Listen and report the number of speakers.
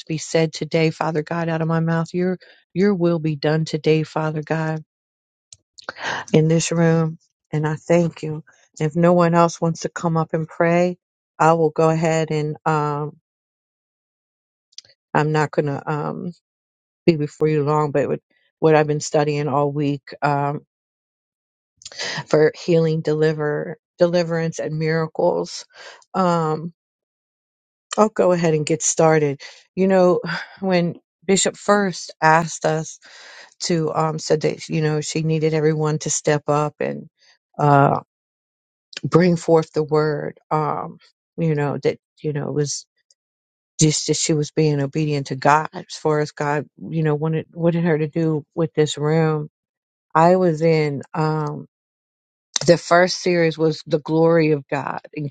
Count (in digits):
1